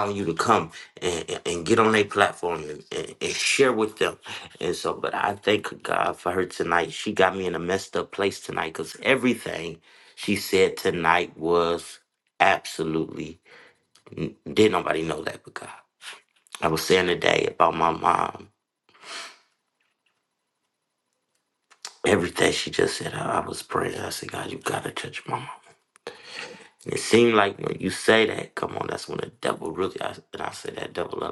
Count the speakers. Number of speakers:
one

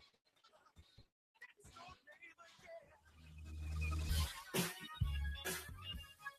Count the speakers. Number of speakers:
zero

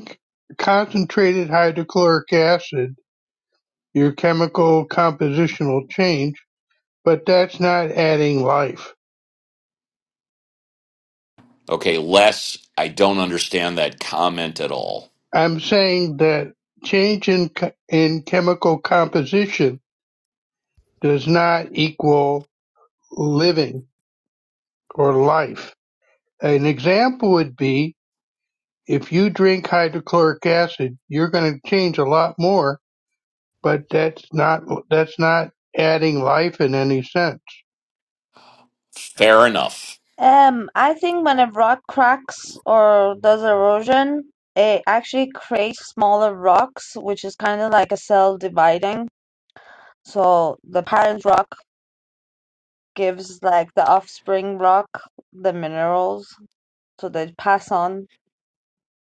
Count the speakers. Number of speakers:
three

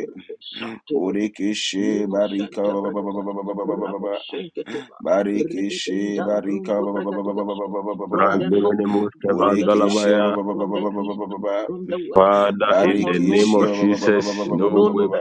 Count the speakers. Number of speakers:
three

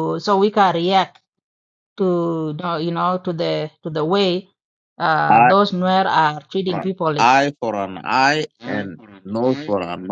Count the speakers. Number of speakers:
two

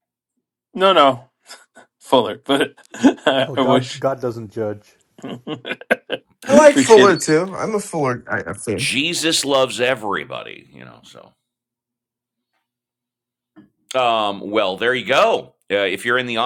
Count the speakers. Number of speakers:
four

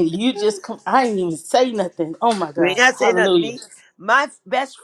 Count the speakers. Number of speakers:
two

